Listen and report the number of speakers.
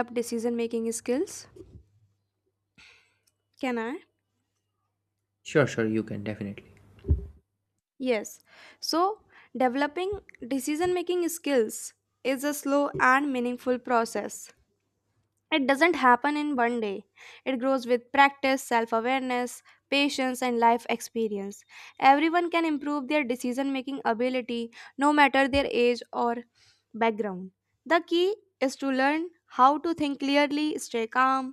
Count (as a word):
two